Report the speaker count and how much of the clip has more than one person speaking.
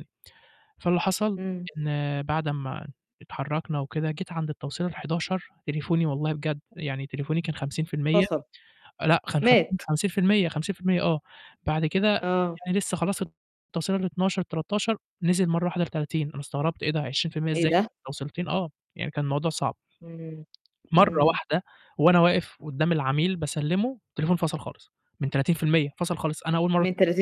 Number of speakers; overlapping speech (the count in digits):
2, about 4%